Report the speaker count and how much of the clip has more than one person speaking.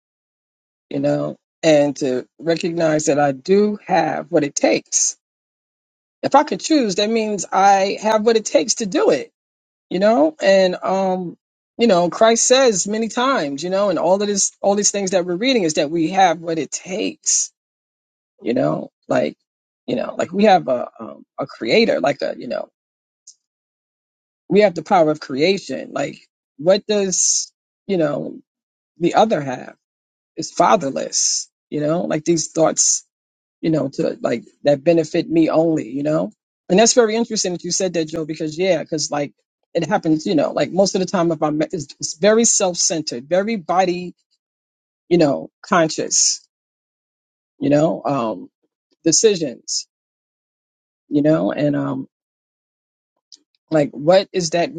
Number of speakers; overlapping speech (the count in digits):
1, no overlap